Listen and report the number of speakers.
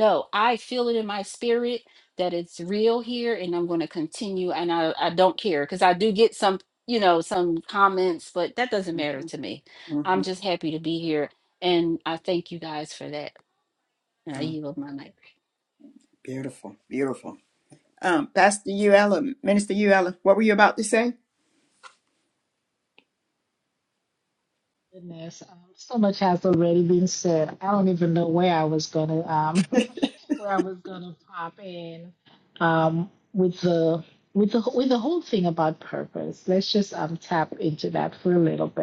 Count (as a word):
three